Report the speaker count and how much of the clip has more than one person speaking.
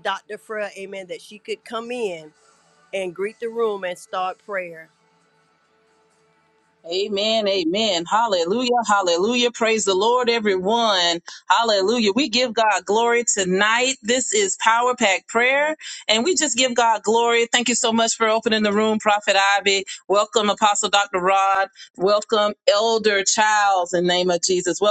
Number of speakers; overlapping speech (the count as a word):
two, no overlap